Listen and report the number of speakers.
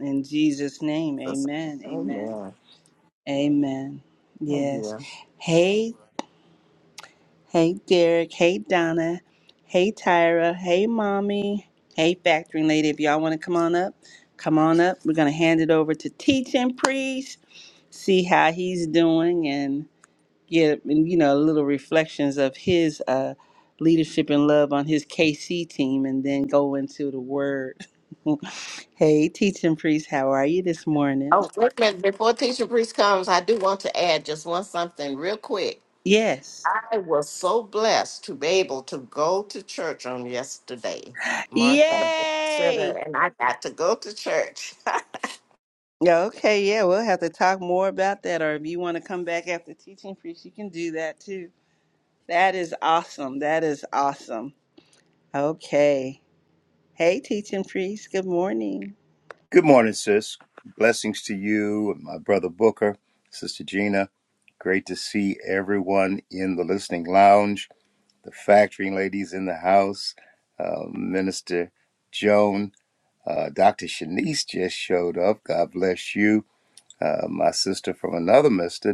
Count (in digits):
3